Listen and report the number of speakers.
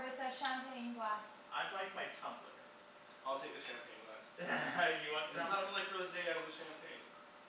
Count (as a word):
three